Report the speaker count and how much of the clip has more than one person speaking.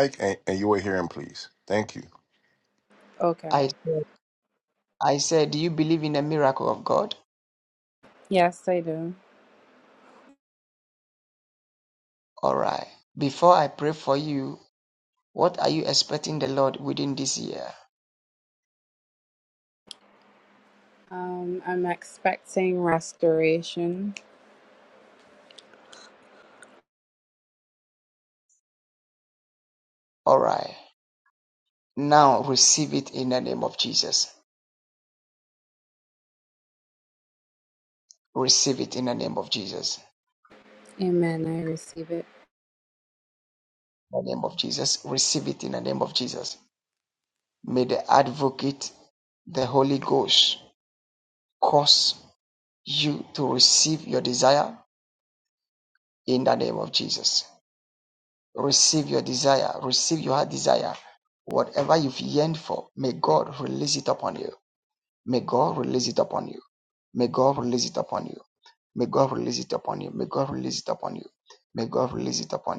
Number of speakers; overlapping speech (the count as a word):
three, under 1%